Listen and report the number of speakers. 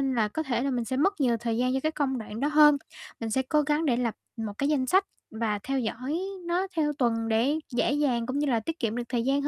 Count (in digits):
1